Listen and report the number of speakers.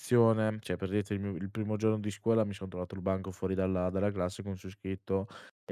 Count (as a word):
one